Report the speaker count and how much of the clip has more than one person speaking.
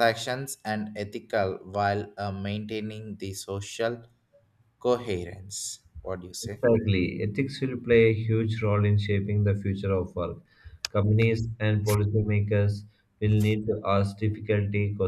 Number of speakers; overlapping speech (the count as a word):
two, about 1%